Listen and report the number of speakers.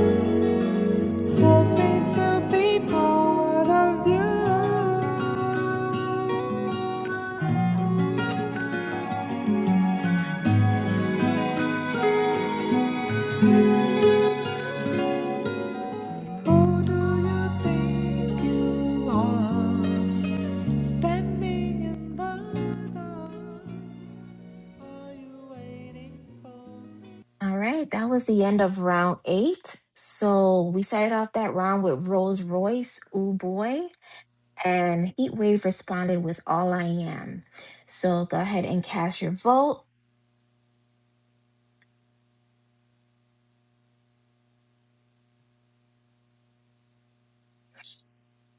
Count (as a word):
two